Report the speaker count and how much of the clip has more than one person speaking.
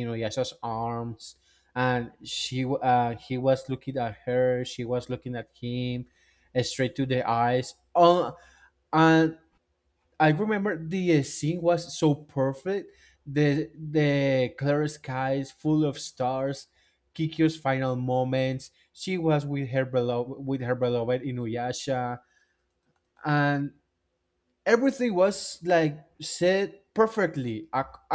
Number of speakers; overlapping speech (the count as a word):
one, no overlap